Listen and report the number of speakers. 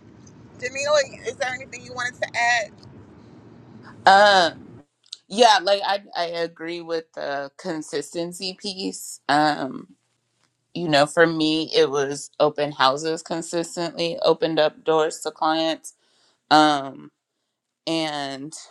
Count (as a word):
two